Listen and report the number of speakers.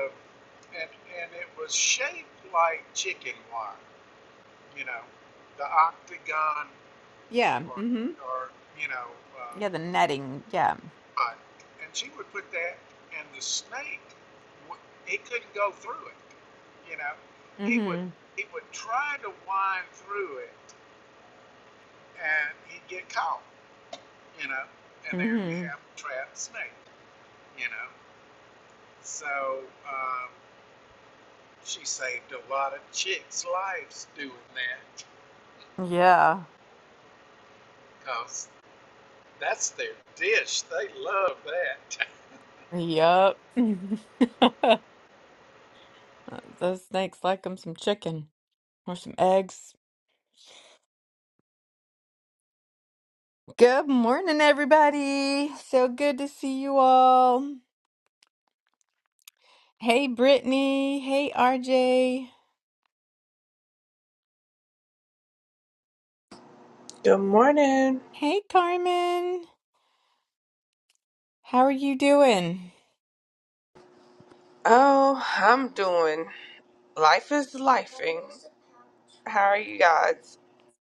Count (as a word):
three